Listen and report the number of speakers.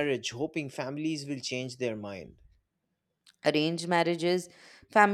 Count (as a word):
two